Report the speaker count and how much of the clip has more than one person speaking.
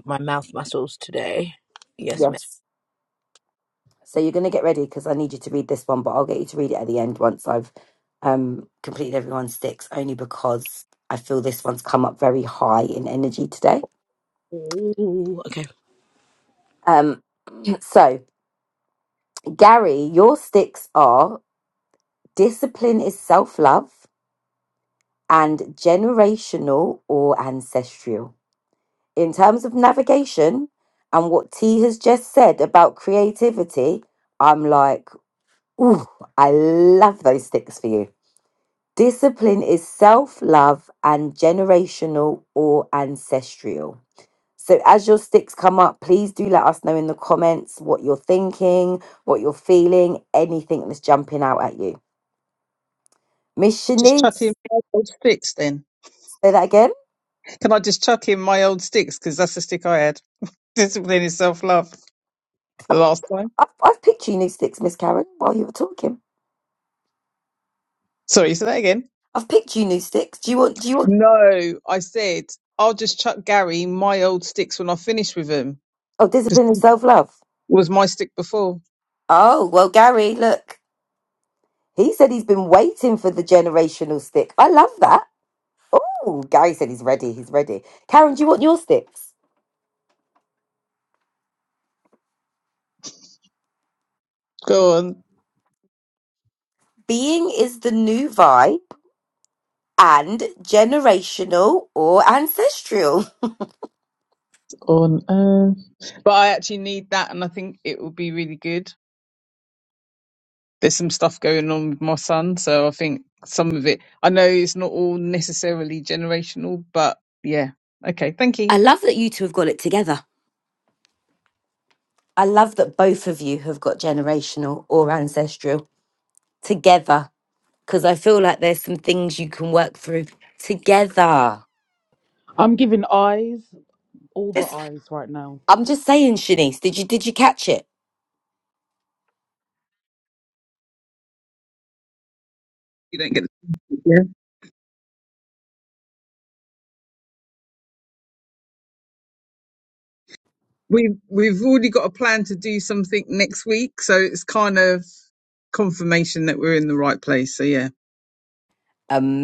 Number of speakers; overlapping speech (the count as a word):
four, under 1%